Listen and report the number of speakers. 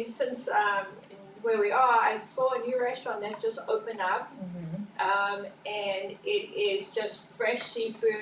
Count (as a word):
one